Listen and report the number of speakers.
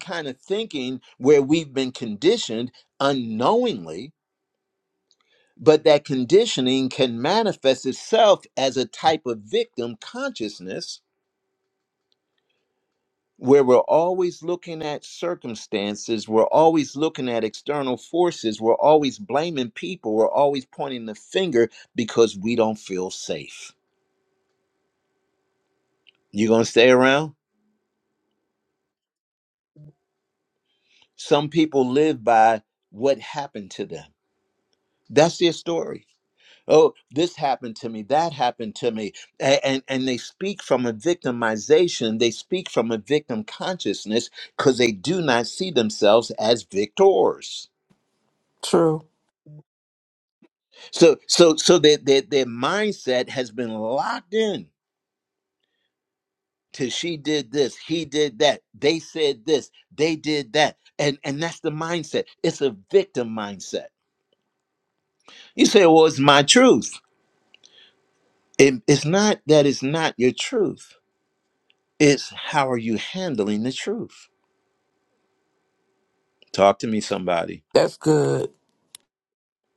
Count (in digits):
2